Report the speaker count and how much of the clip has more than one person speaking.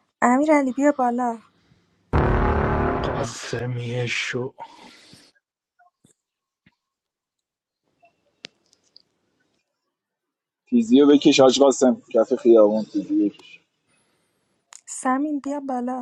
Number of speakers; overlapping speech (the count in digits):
3, no overlap